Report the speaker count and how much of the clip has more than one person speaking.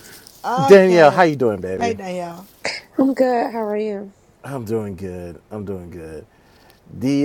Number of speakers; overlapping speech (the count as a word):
three, about 12%